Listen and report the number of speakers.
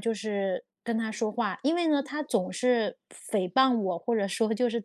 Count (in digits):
1